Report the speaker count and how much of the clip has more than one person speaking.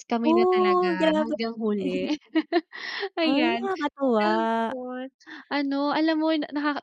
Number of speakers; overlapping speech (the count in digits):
2, about 30%